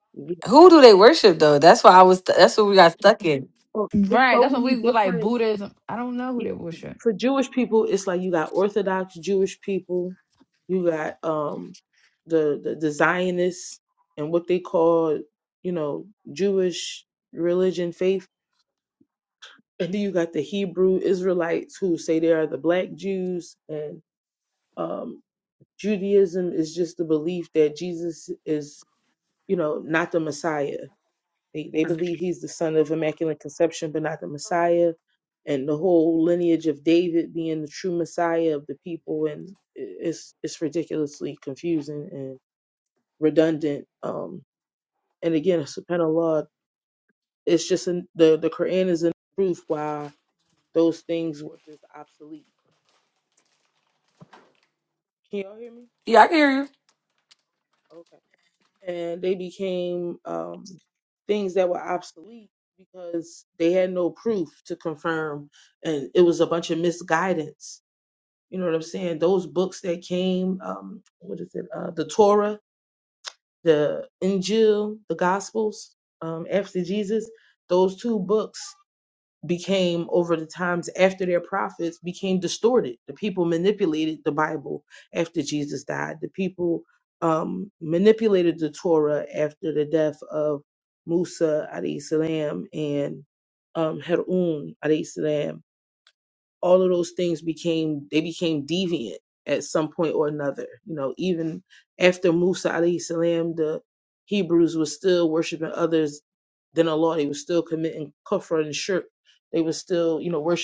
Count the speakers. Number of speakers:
3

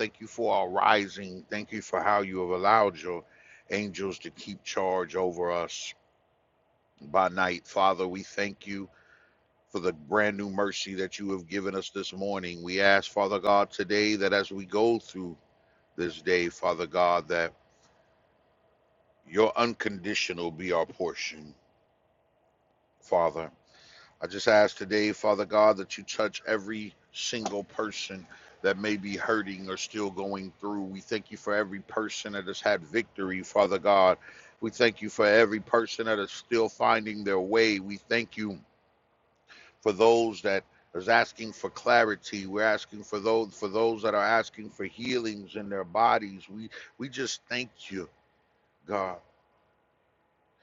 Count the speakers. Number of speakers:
1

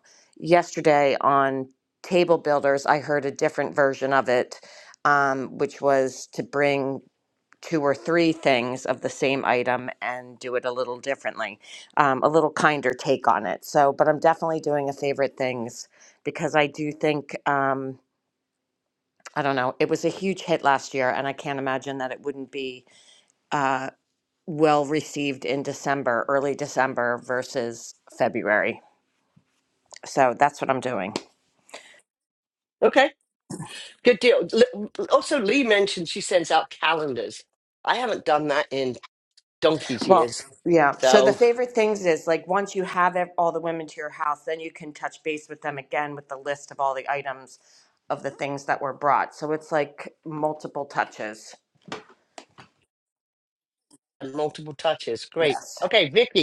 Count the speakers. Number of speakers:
2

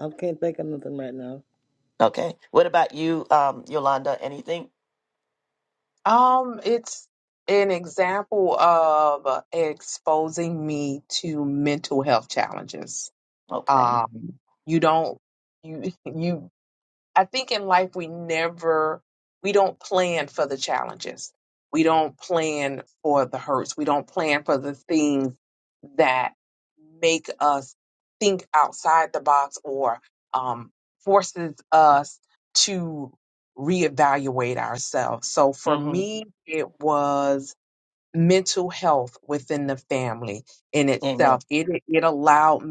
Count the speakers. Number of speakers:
3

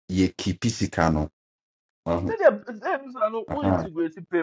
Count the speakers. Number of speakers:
2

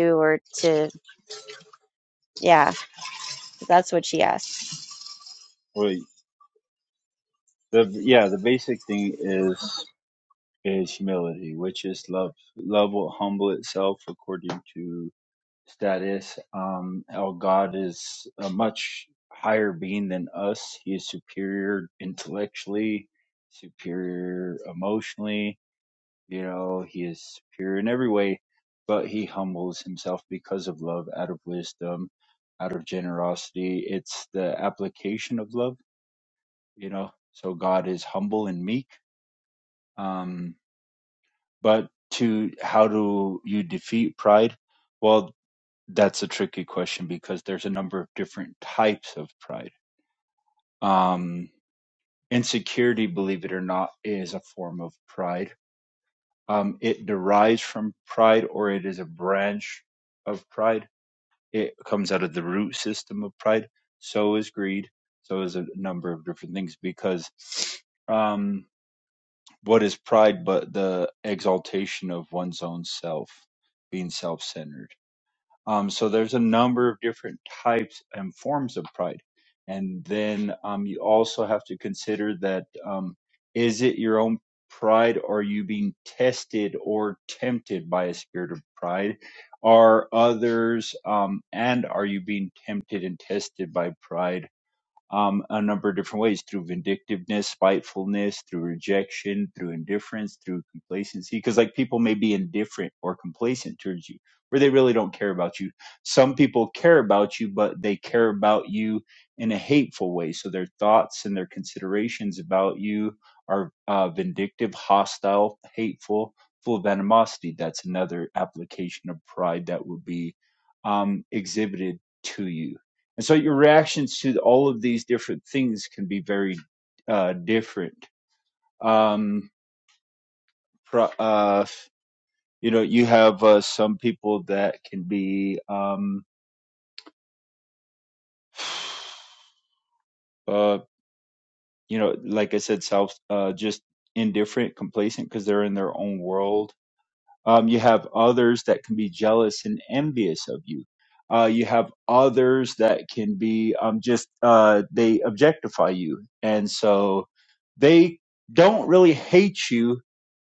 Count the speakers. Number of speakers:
2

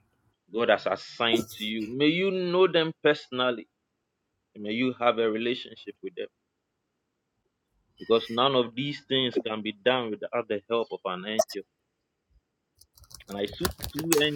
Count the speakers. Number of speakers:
1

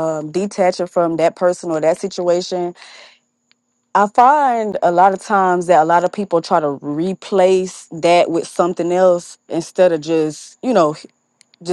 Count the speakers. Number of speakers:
1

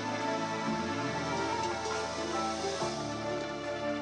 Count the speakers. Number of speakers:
0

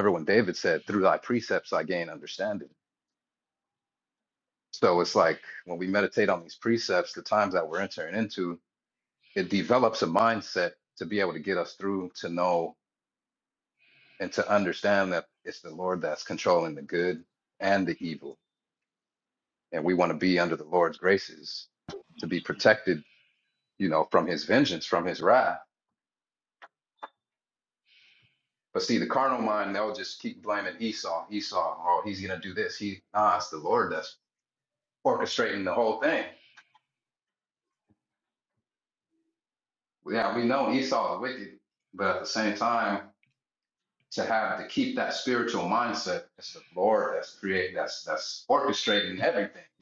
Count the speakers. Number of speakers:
1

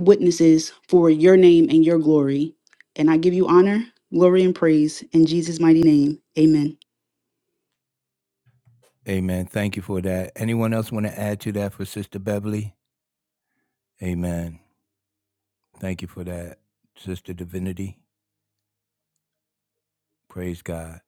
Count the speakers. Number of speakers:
2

